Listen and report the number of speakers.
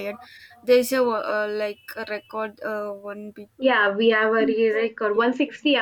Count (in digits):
2